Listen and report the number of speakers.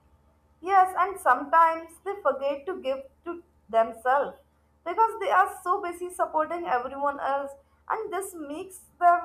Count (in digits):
1